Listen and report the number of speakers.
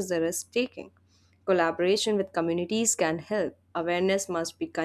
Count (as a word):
one